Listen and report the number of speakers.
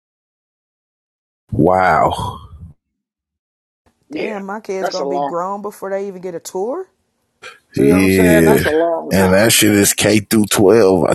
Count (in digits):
3